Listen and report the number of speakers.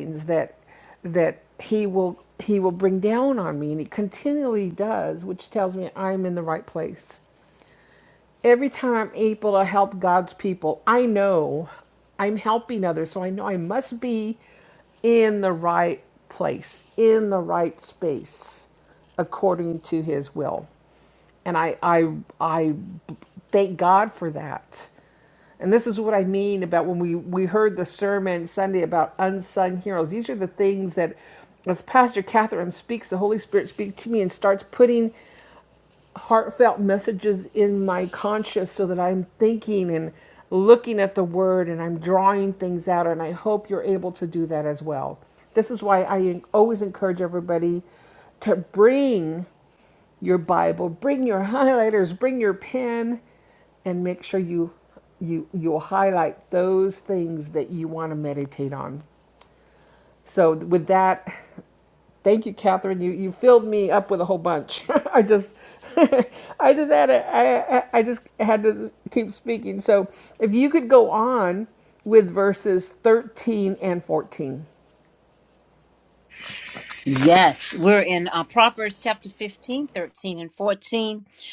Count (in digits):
2